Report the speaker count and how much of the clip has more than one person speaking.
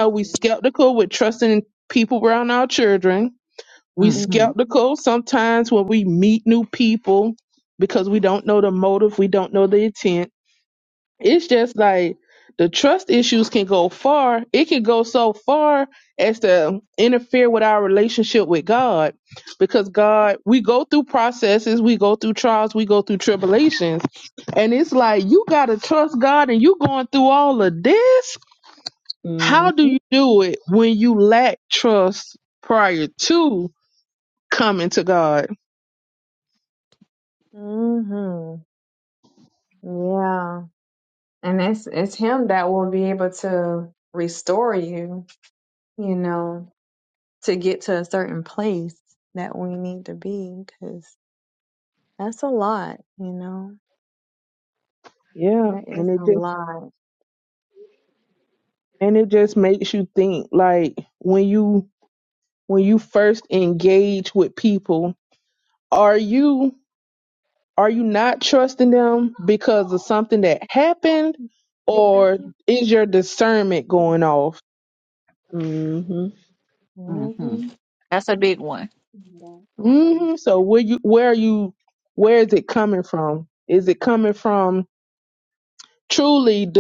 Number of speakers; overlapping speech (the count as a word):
four, about 4%